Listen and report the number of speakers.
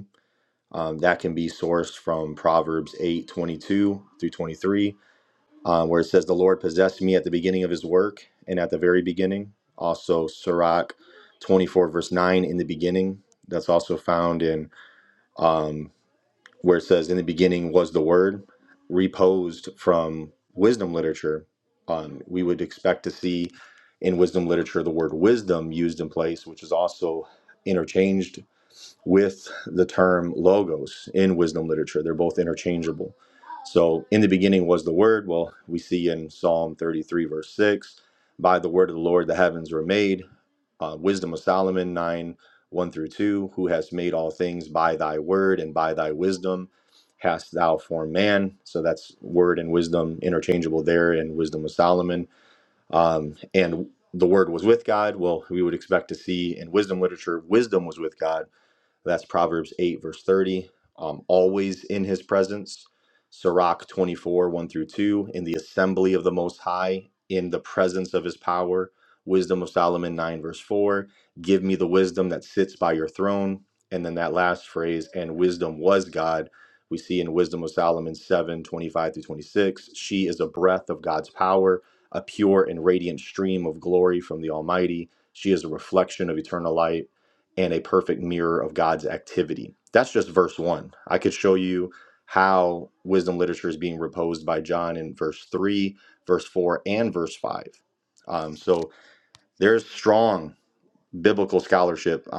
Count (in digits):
1